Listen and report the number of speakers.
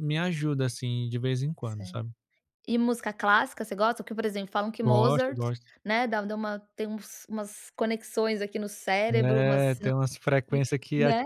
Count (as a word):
two